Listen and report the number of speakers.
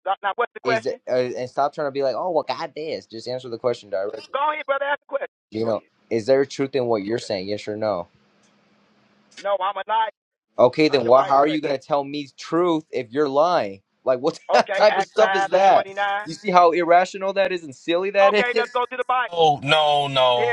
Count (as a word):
three